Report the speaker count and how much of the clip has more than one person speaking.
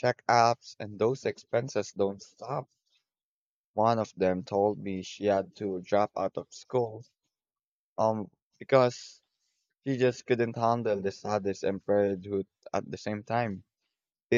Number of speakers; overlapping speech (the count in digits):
1, no overlap